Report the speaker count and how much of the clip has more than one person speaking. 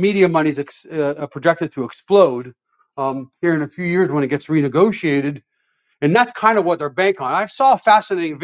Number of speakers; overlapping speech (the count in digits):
1, no overlap